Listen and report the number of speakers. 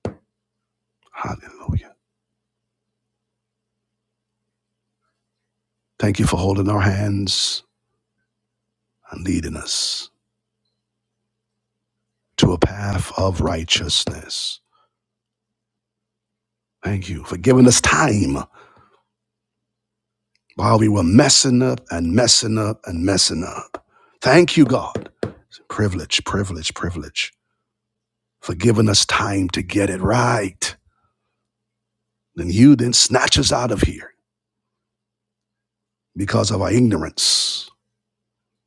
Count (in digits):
1